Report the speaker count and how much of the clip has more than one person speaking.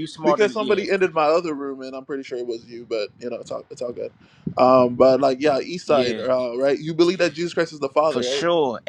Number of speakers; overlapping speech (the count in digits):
2, about 15%